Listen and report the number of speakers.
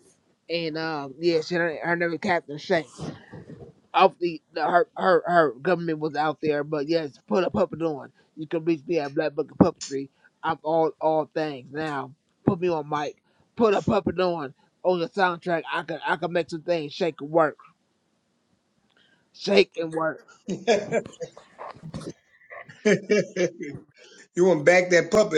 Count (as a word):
two